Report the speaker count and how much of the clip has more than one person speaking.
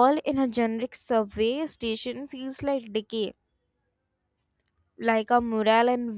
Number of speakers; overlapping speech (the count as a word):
one, no overlap